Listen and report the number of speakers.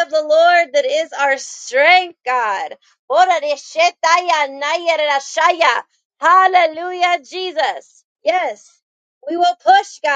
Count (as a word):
one